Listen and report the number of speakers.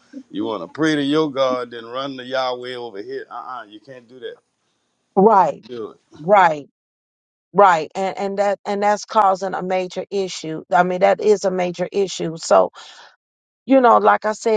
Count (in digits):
2